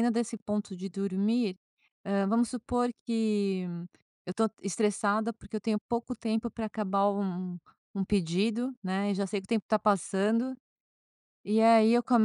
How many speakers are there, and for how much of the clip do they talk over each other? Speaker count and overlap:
one, no overlap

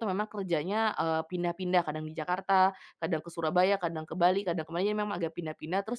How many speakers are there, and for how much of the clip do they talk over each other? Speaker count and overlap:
one, no overlap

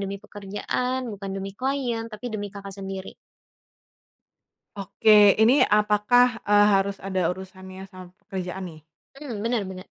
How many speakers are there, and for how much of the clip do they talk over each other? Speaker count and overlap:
two, no overlap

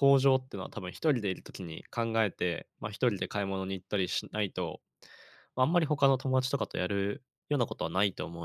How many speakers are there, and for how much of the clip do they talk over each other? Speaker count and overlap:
one, no overlap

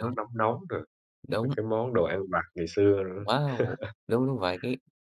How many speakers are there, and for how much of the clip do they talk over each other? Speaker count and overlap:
two, about 8%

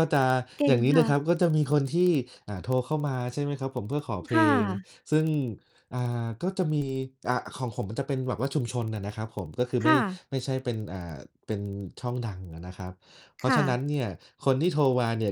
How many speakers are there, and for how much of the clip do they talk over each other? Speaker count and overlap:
two, about 9%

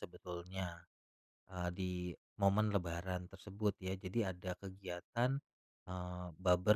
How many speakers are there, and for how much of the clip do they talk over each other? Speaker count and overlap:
one, no overlap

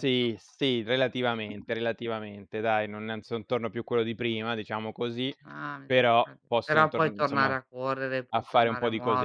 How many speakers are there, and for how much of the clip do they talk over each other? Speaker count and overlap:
two, about 21%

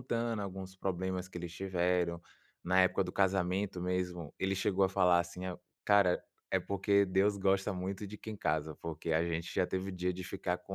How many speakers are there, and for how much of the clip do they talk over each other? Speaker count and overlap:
one, no overlap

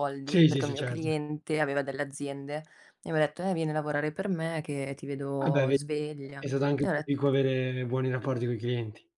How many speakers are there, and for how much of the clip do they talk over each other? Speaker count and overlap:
two, about 16%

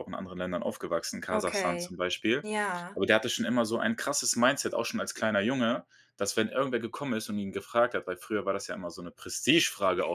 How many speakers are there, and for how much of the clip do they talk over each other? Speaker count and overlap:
two, about 6%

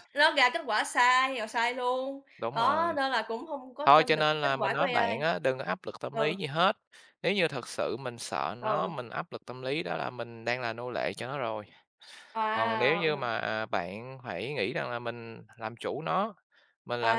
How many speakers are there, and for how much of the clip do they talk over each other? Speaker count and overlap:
two, about 19%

